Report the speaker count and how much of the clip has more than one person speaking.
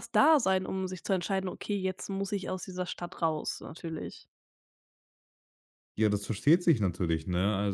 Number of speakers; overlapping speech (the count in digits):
2, no overlap